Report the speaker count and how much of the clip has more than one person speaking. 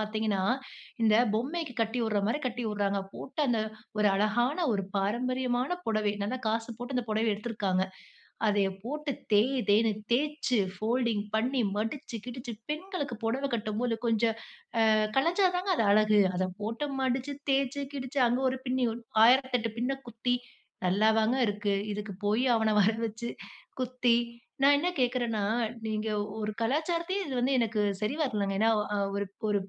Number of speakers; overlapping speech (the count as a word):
one, no overlap